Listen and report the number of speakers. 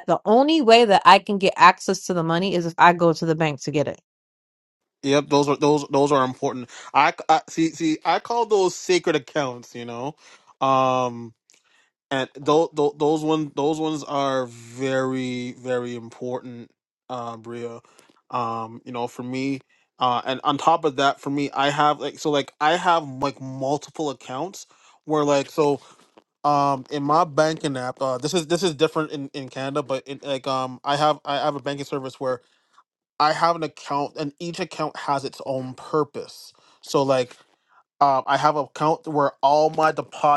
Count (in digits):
2